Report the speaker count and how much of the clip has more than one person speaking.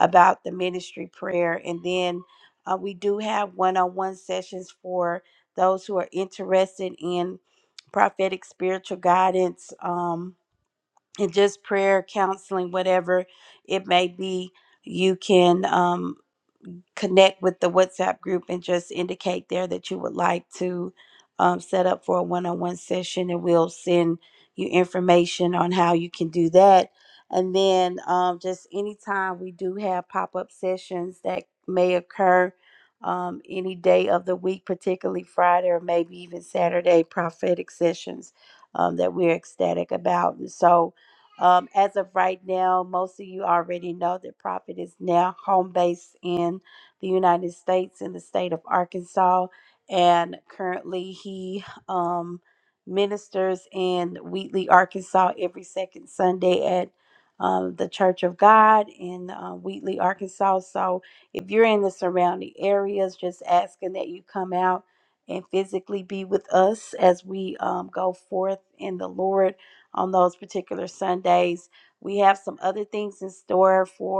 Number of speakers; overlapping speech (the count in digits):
1, no overlap